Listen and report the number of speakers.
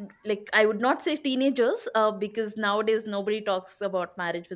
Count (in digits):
1